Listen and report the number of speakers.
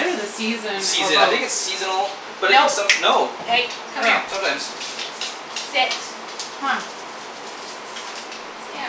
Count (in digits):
3